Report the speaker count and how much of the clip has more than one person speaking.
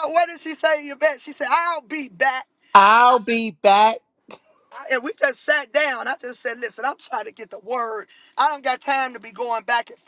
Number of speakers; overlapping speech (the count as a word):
two, about 1%